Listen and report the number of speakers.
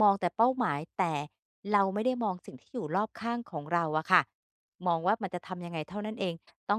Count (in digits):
1